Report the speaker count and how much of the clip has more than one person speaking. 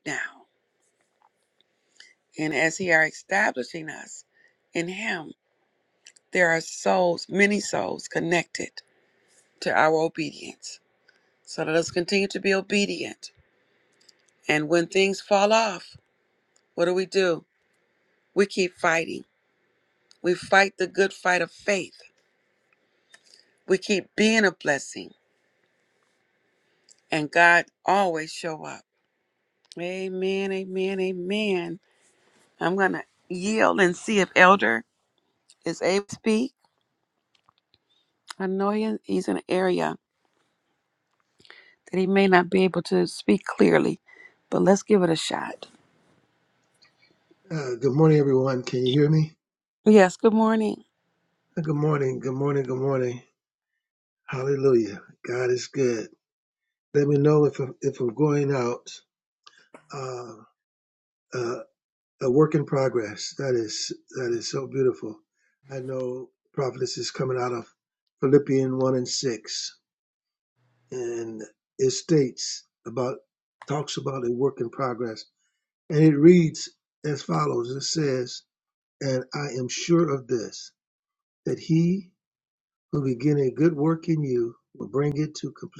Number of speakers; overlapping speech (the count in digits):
2, no overlap